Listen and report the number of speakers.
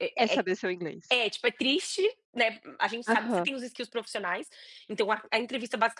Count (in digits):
2